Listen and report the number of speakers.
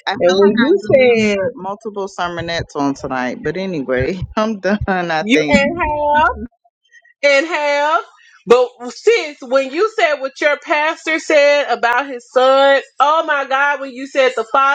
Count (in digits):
2